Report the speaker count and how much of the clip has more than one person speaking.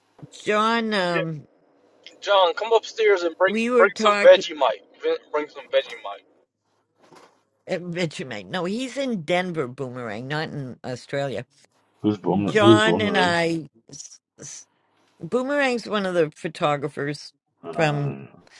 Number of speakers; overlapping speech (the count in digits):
3, about 13%